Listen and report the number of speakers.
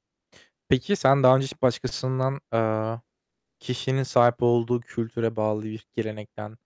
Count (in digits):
1